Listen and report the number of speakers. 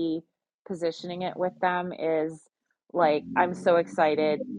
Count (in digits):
1